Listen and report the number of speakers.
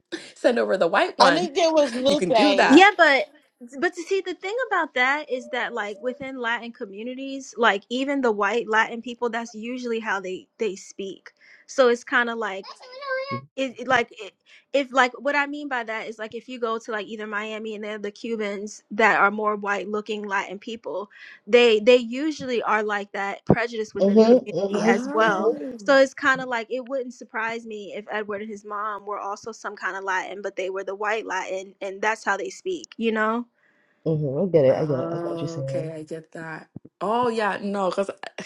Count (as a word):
four